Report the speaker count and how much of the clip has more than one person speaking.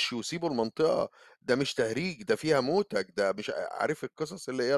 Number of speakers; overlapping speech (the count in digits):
1, no overlap